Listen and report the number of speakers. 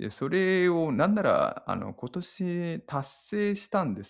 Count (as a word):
one